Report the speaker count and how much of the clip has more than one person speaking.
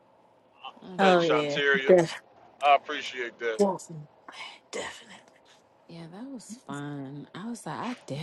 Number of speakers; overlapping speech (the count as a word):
three, about 11%